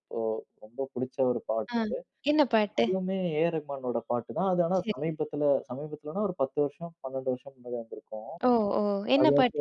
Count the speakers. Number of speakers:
two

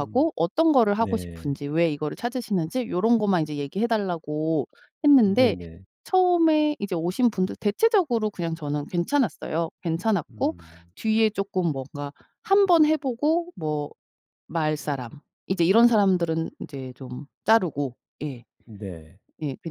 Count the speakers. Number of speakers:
two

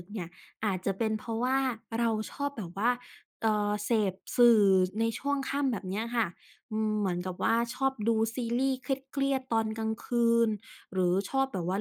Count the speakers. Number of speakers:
one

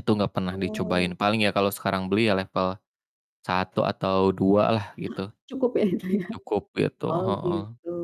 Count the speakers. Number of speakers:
two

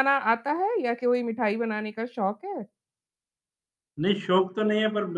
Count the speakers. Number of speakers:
two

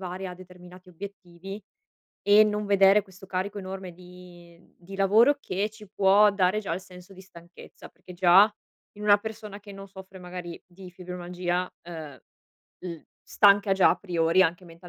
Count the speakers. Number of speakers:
one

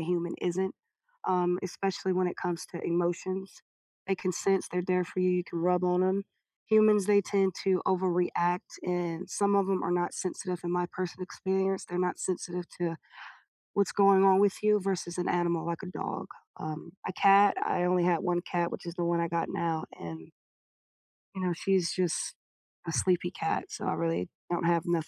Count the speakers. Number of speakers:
one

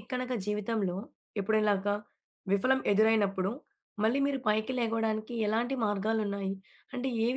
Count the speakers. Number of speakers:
one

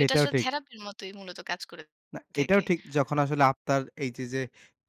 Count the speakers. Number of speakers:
two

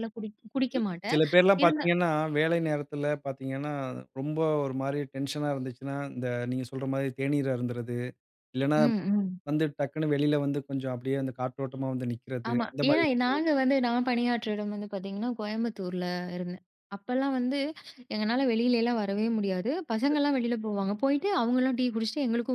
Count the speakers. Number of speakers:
two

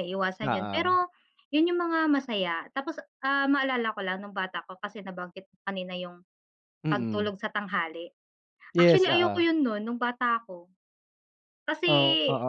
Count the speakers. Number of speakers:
two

